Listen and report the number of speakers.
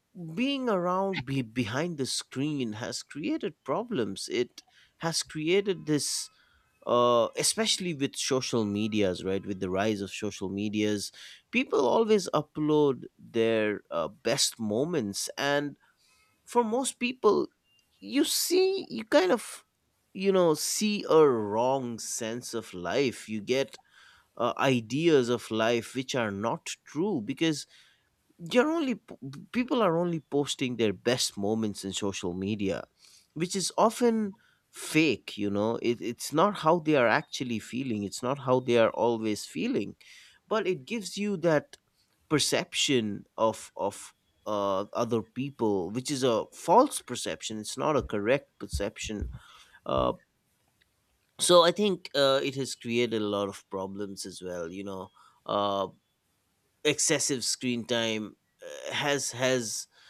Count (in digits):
1